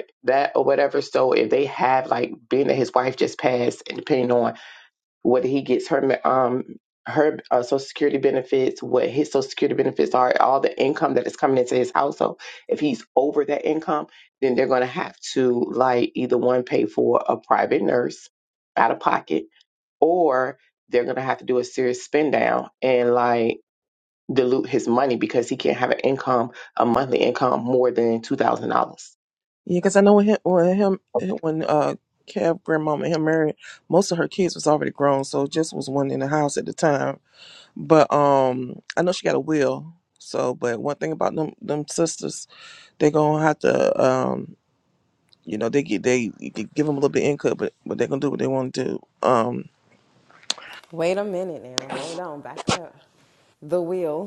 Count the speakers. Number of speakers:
three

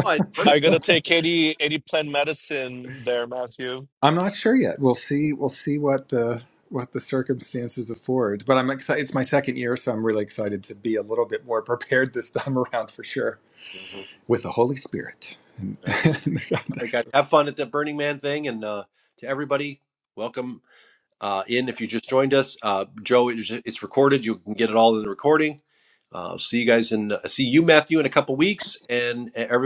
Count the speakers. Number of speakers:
three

